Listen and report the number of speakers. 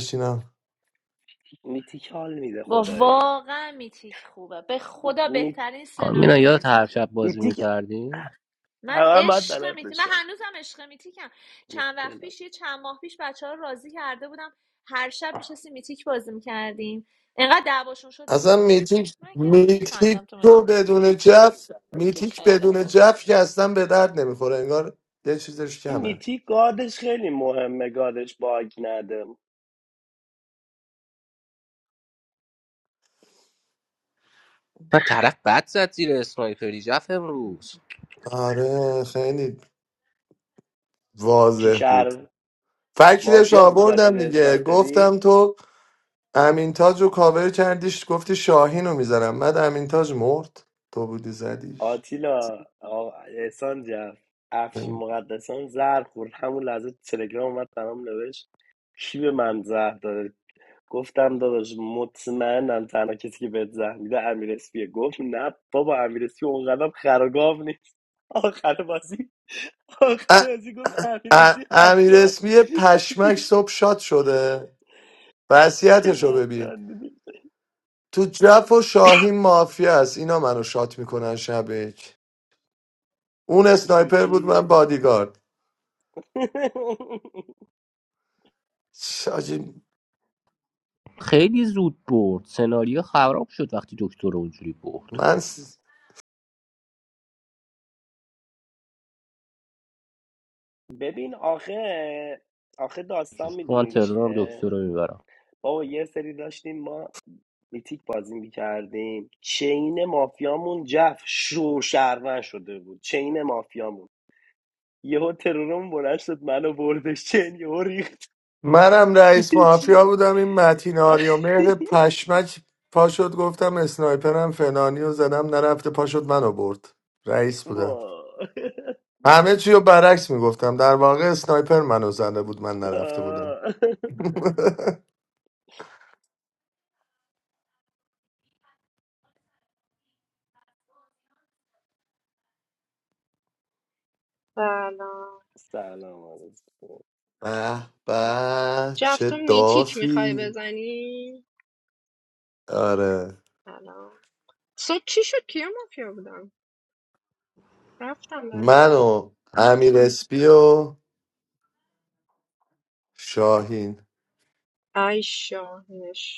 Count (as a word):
five